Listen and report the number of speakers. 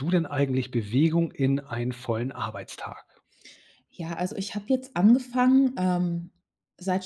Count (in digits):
2